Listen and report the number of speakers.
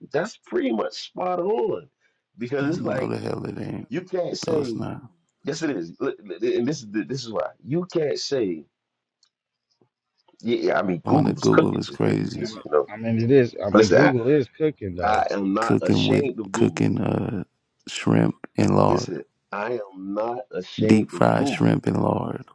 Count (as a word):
three